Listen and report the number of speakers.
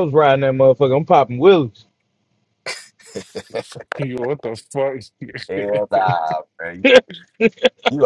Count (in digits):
3